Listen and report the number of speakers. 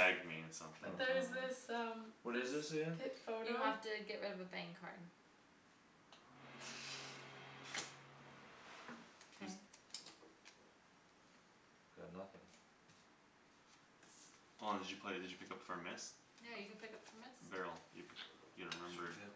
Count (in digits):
4